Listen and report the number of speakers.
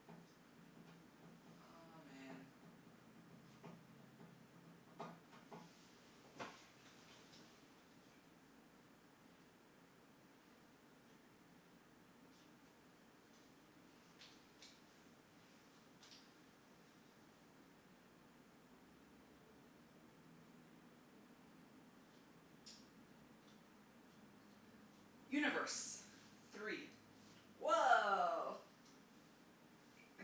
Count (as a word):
two